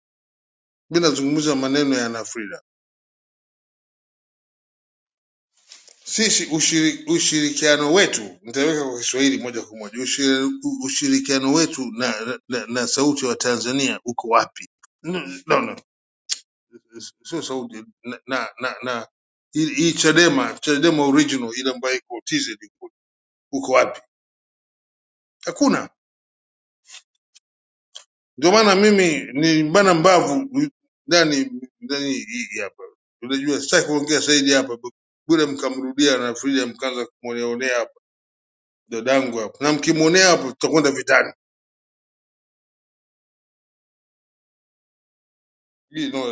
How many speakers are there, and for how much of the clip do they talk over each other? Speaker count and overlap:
one, no overlap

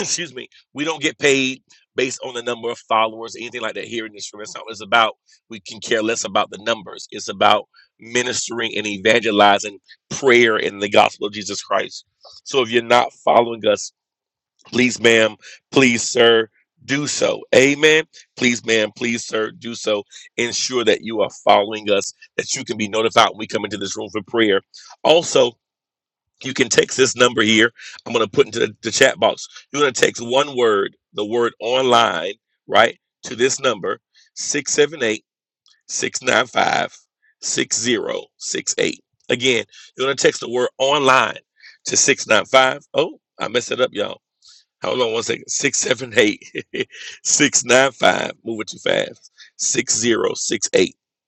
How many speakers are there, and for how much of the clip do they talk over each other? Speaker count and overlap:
one, no overlap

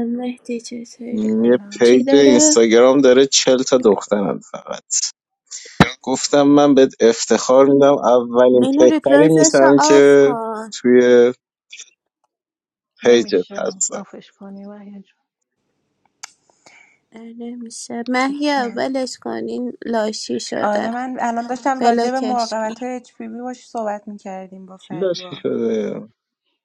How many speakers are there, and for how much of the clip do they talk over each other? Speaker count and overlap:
four, about 22%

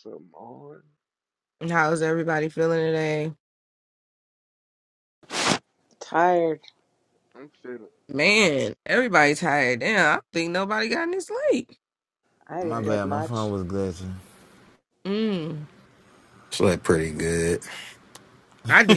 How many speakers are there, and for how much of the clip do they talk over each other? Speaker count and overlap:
five, about 4%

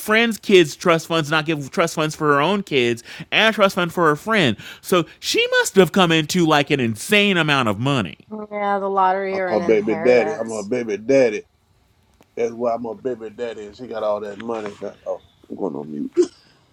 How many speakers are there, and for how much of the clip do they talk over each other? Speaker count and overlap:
three, about 6%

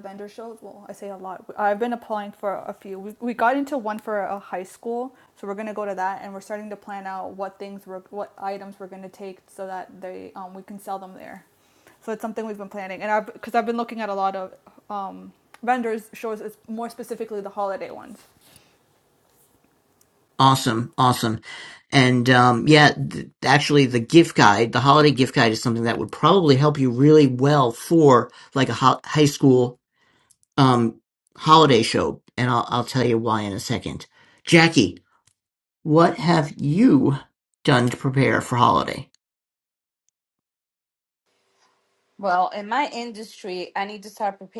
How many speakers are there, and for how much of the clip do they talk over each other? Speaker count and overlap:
three, no overlap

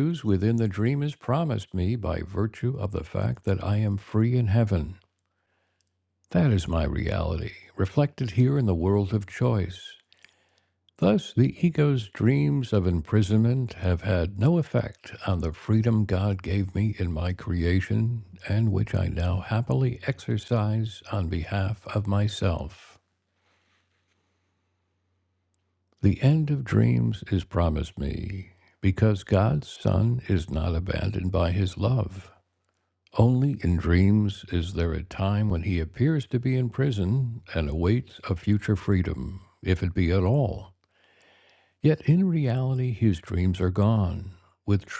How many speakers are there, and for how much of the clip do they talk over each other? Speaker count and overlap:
one, no overlap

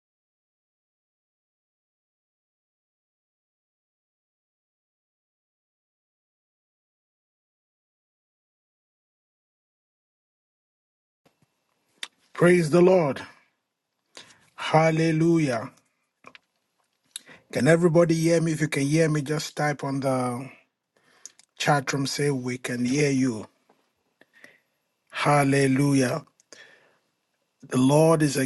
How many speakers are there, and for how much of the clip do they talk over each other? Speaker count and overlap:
one, no overlap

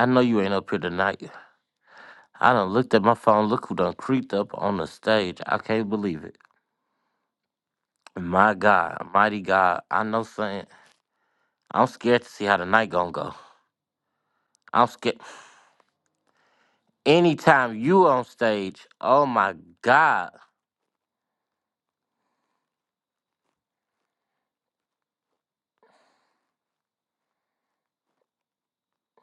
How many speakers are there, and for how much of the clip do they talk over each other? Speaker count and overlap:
one, no overlap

